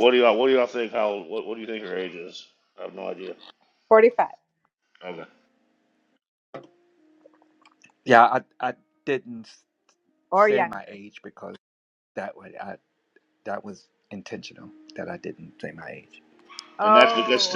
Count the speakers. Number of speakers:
three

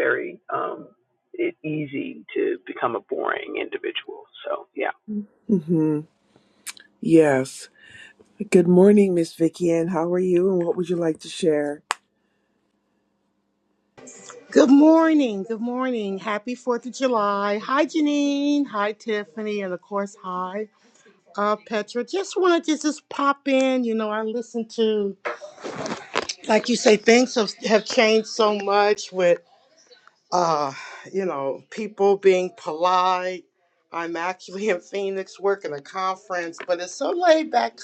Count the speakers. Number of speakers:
three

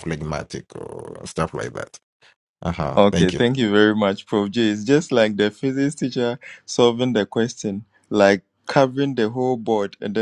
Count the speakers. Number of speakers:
two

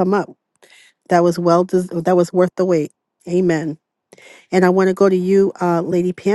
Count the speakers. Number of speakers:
one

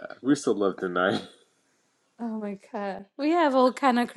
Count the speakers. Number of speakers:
two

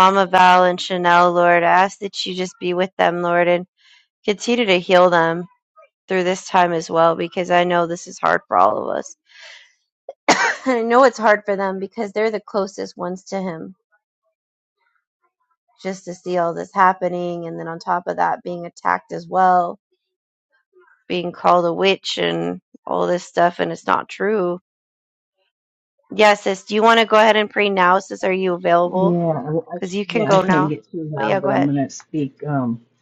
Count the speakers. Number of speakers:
two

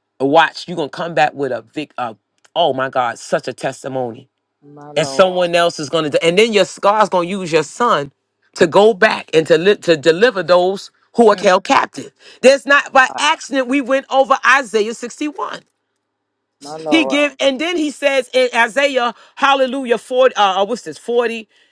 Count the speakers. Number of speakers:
two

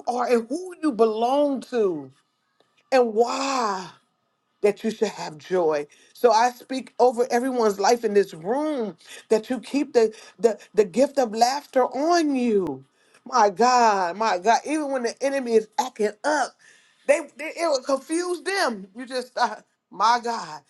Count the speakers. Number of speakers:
one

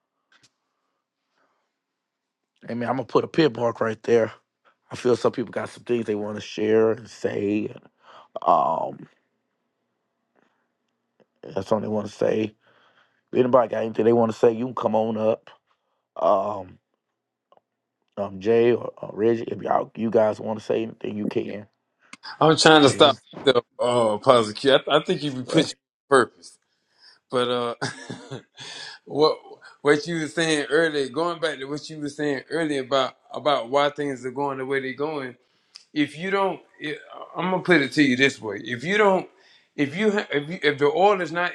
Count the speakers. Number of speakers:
two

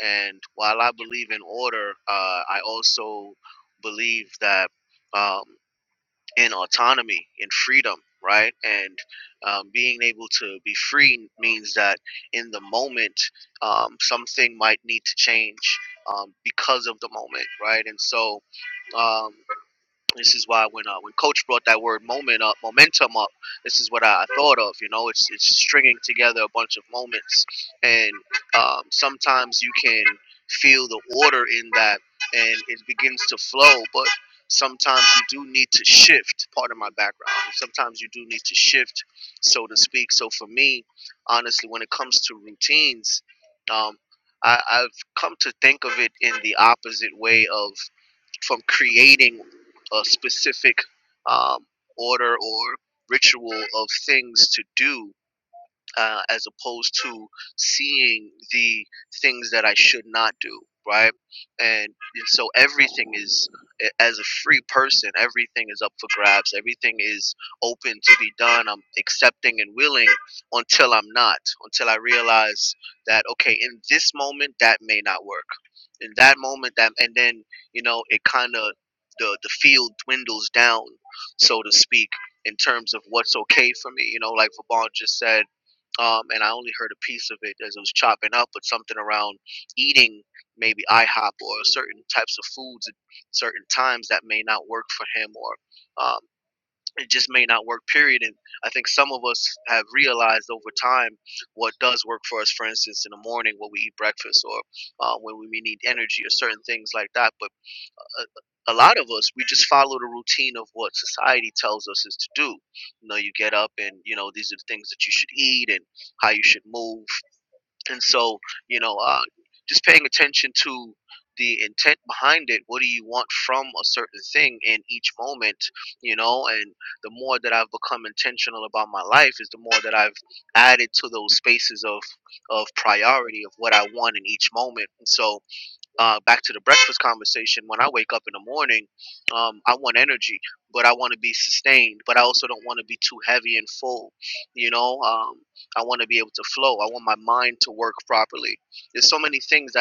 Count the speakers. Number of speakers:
one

